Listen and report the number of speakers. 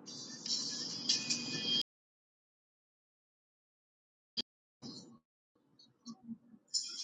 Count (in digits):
0